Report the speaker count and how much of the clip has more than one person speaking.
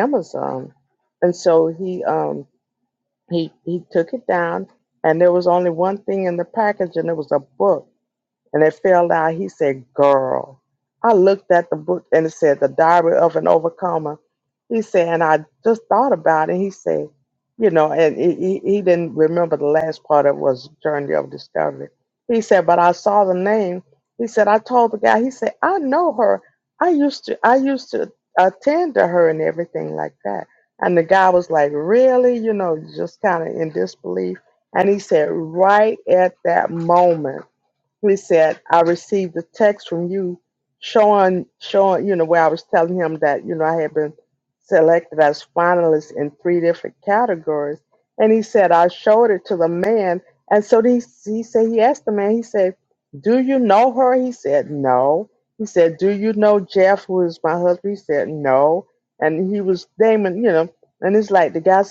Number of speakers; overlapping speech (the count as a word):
one, no overlap